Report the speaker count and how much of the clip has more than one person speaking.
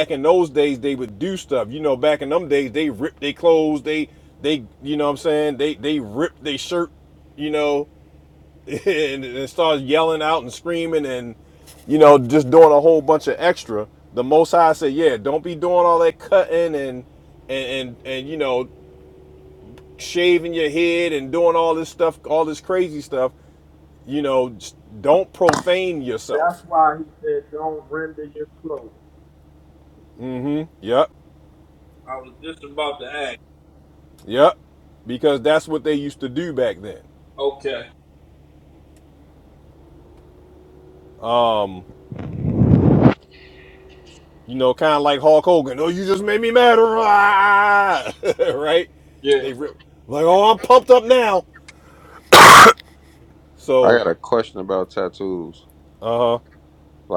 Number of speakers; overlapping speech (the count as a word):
three, about 1%